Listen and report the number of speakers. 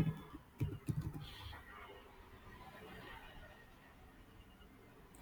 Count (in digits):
0